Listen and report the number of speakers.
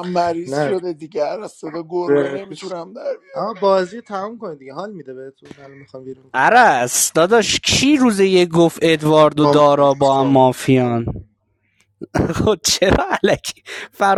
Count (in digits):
3